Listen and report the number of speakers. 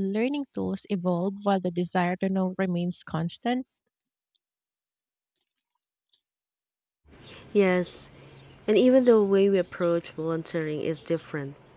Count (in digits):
2